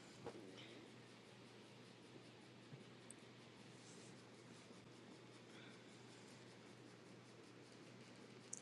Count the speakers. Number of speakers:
0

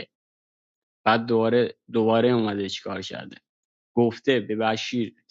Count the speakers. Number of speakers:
1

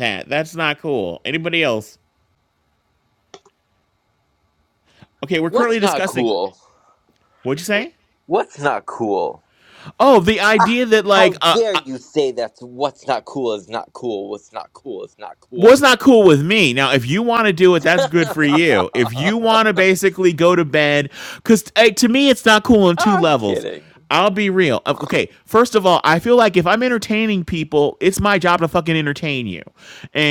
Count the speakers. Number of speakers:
2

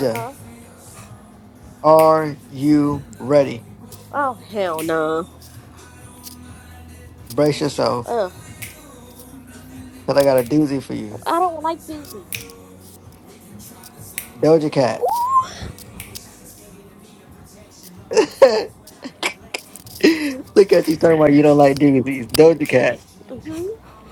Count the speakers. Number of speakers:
2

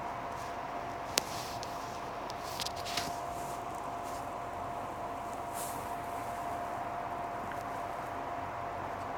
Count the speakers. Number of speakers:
0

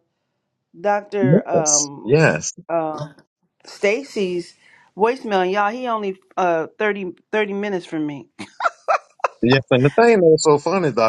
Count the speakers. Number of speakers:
2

